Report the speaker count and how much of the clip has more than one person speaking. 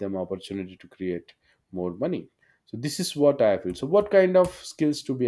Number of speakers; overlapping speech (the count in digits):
1, no overlap